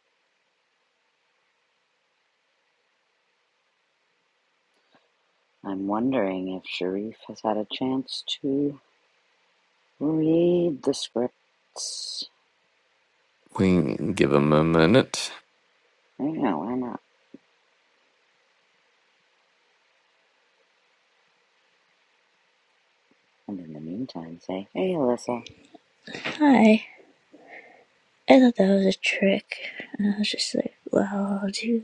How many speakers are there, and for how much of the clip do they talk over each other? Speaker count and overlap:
3, no overlap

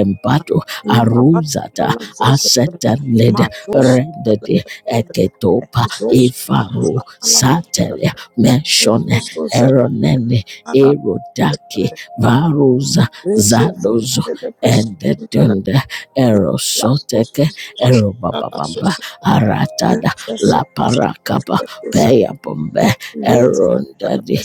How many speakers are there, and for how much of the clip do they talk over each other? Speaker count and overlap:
2, about 34%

